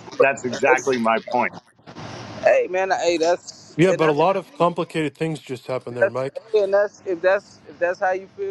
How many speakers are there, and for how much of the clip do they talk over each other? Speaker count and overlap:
3, about 18%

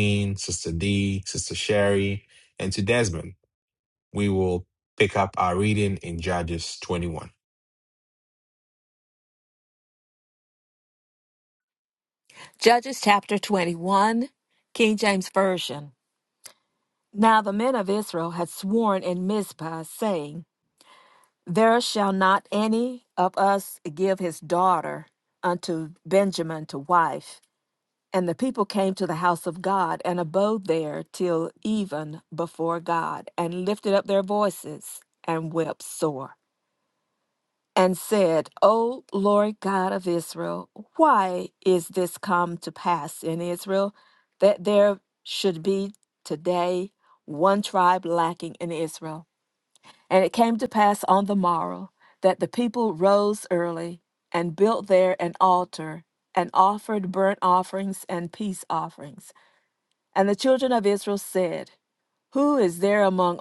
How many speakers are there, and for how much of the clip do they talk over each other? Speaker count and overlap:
2, no overlap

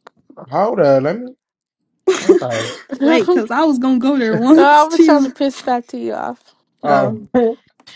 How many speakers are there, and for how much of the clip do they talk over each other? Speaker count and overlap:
3, about 16%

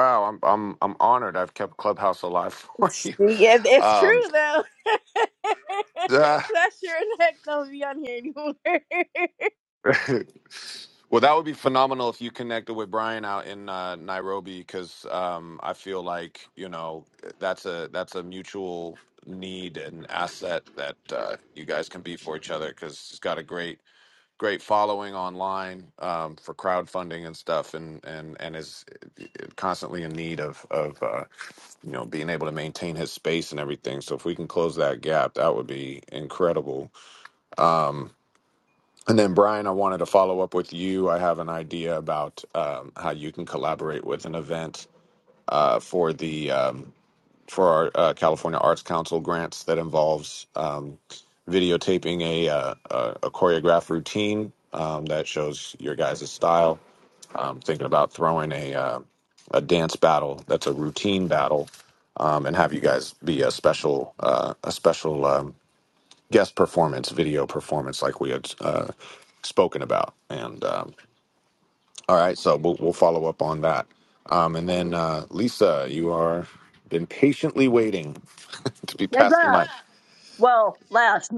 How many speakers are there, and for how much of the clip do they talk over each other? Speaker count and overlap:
3, about 1%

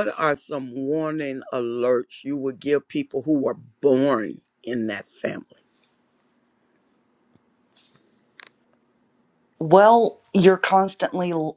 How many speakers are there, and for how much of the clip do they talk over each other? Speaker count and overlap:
2, no overlap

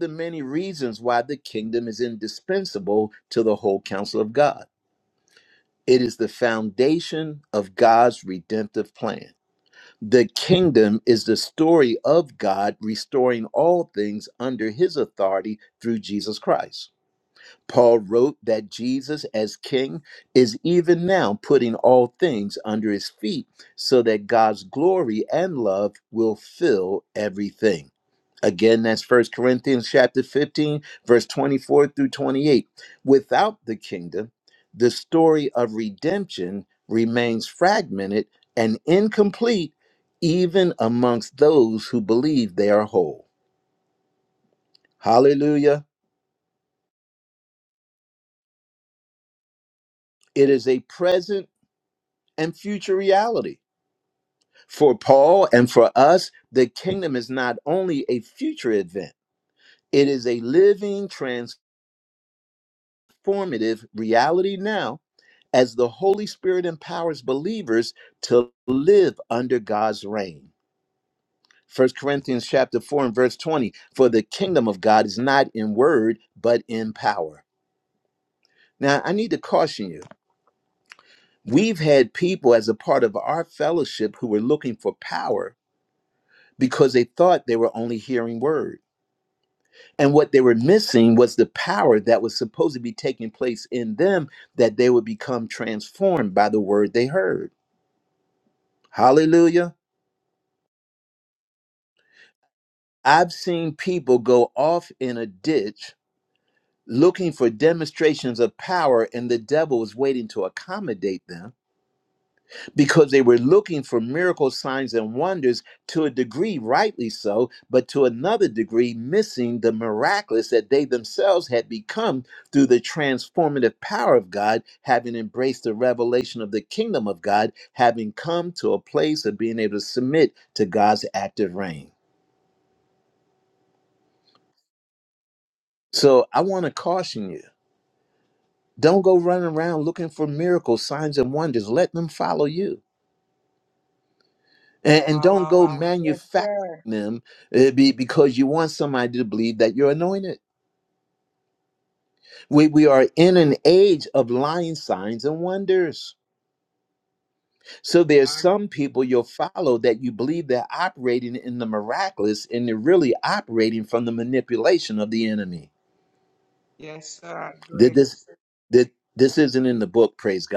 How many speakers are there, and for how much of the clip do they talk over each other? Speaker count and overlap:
2, about 1%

